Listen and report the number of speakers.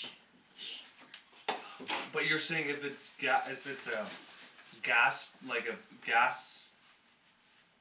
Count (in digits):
1